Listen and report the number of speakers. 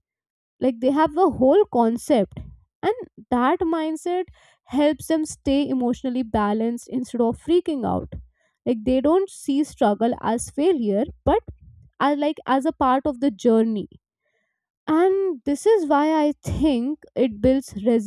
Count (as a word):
one